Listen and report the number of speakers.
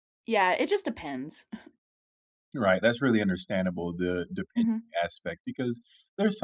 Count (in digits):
2